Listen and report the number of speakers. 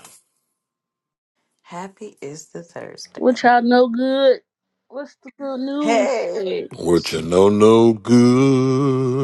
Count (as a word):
three